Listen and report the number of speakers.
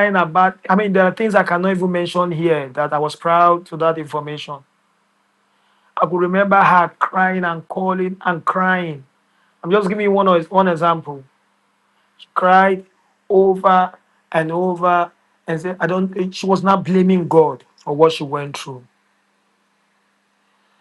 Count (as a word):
one